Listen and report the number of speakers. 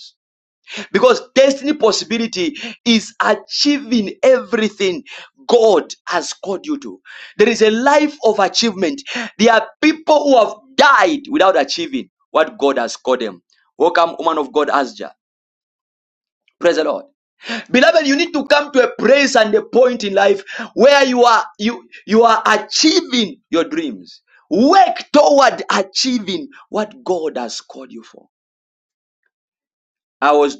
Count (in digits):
1